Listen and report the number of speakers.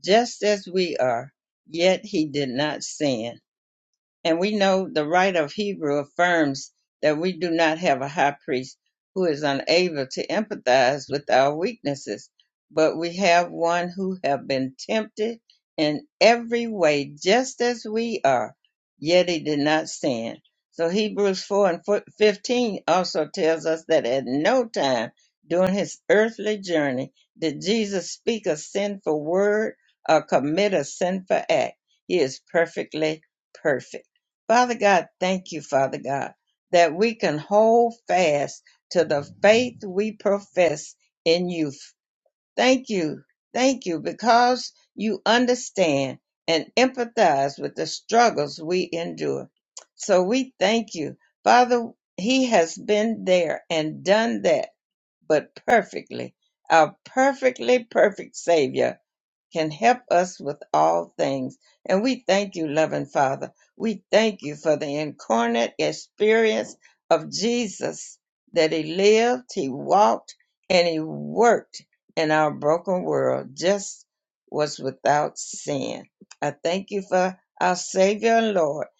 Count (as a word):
one